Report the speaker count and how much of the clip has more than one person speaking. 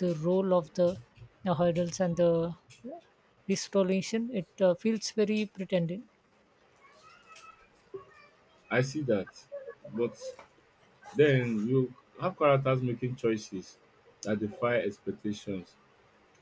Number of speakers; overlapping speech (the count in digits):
2, no overlap